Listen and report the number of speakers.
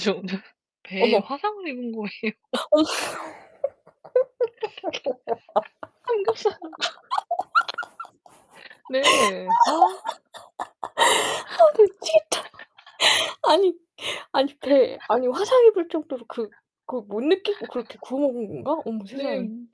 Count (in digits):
2